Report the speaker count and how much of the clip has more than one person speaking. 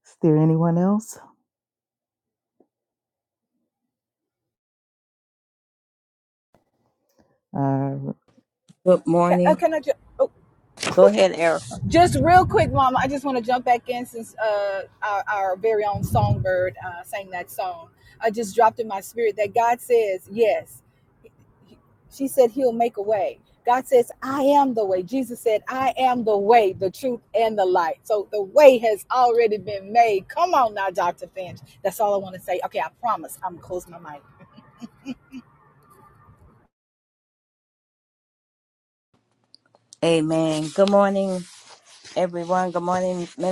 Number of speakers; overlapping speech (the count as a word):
three, about 1%